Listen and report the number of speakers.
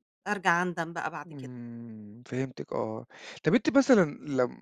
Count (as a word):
two